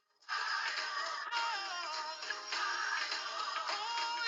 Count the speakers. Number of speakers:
0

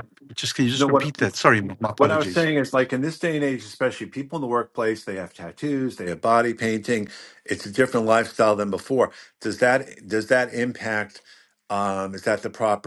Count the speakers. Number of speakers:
2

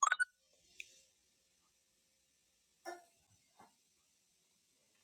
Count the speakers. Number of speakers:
0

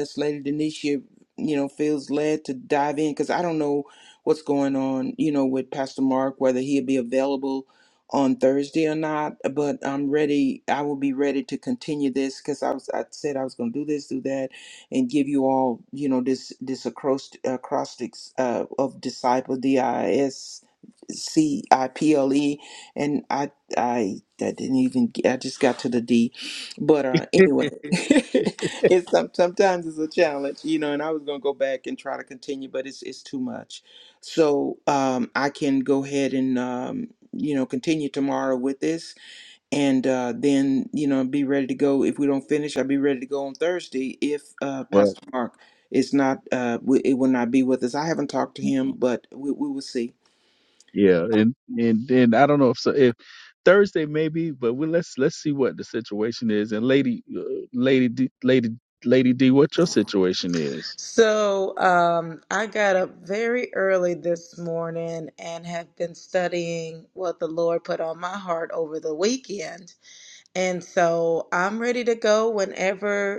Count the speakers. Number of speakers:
3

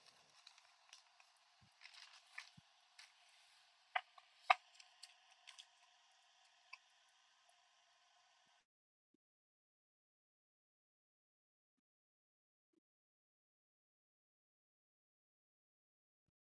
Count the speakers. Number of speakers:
0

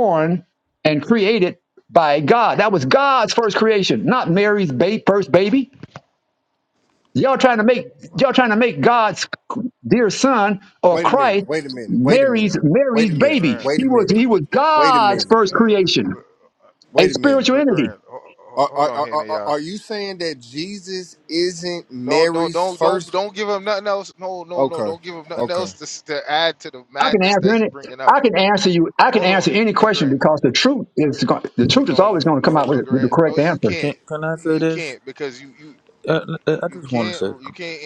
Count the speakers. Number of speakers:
4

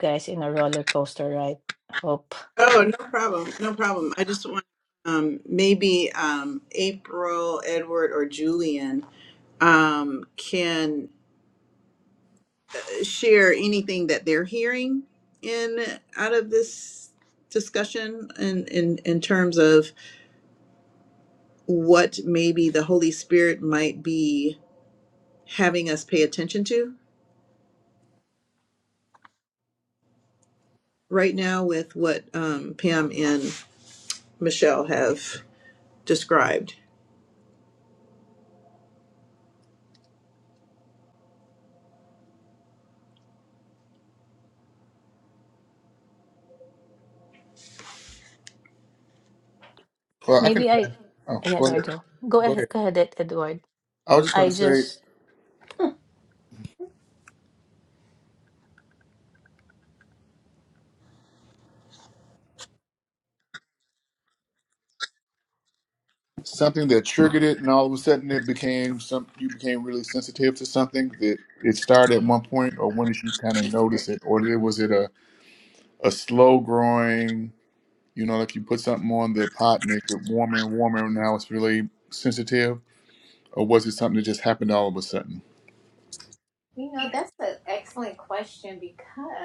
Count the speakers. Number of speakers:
4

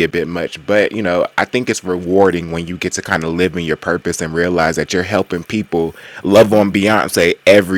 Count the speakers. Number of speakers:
1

